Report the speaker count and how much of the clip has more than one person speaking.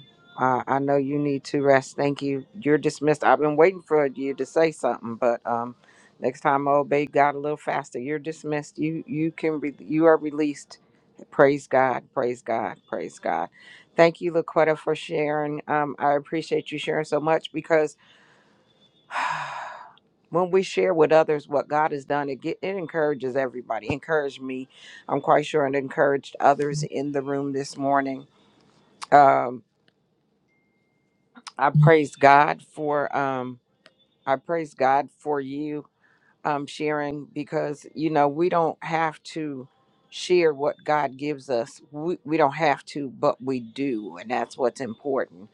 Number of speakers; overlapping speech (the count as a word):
one, no overlap